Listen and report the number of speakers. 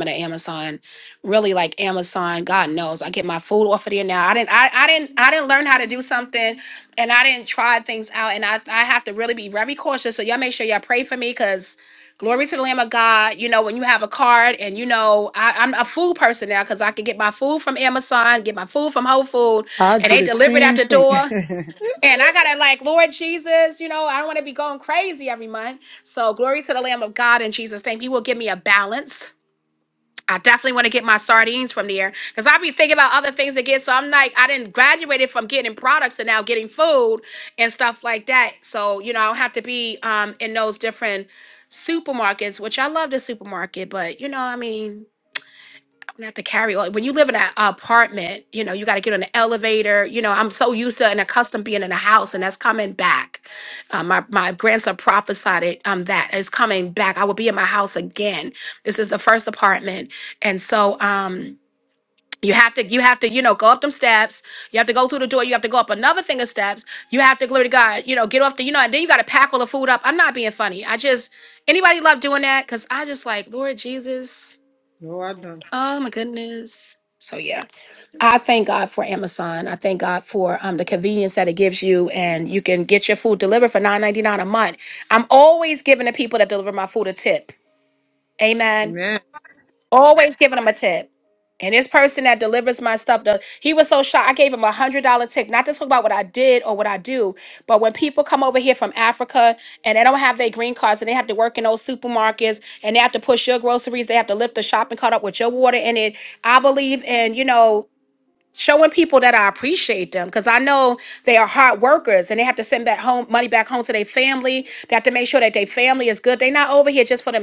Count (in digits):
2